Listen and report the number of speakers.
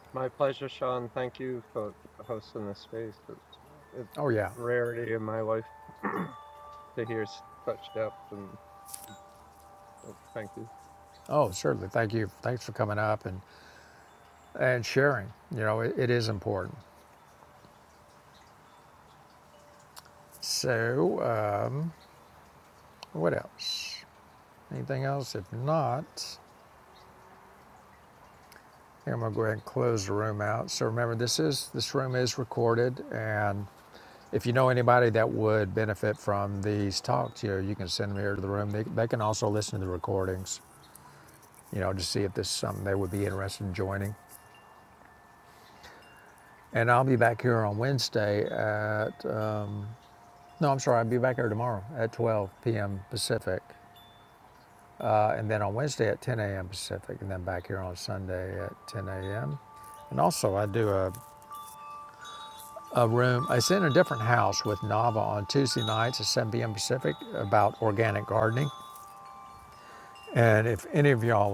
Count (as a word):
two